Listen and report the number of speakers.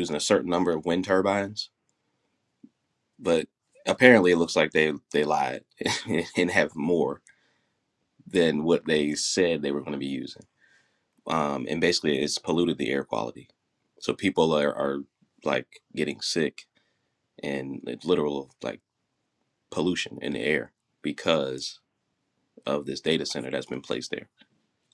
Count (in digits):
1